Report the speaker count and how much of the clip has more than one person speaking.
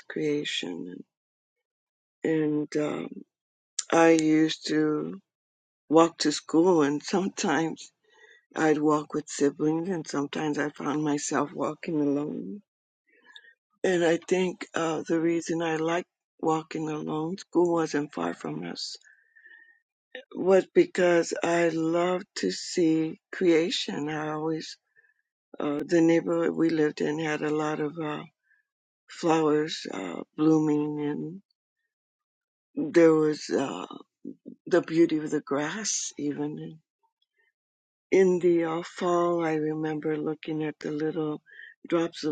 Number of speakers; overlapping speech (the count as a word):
one, no overlap